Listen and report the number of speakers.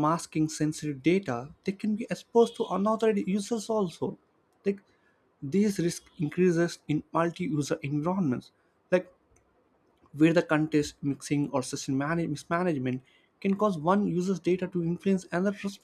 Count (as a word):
one